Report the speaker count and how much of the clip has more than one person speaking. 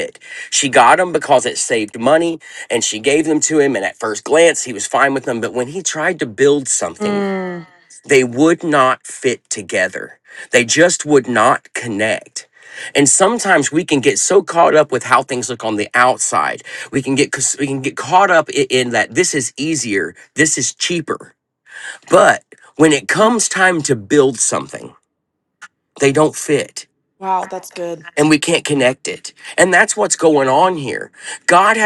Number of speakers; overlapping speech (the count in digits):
2, about 1%